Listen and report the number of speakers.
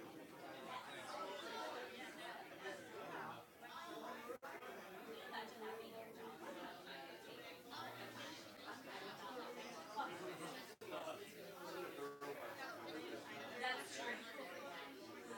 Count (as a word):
zero